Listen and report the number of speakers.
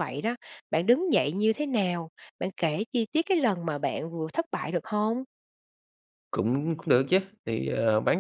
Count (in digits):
2